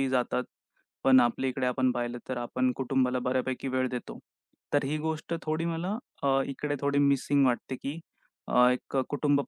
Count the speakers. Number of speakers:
one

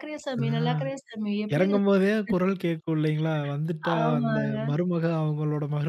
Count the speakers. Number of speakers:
two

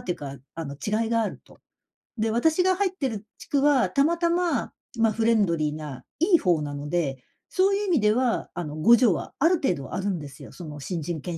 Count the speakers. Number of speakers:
one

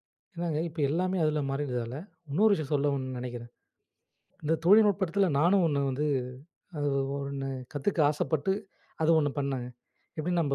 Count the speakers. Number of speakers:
one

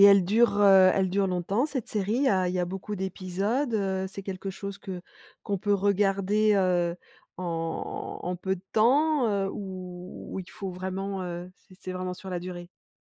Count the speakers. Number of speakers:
one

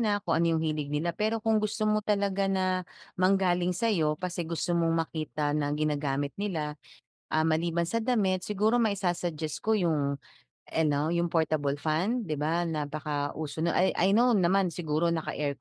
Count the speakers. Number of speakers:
one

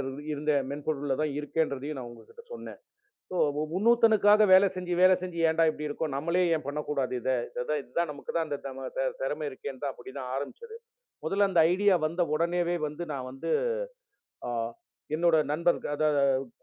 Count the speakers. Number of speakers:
one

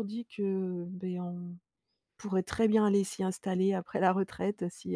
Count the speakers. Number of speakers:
one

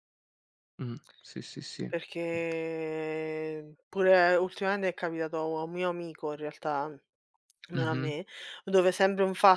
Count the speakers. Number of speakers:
two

